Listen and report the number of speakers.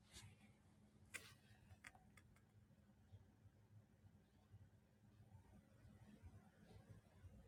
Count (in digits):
0